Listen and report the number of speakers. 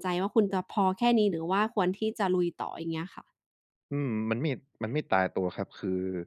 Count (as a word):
two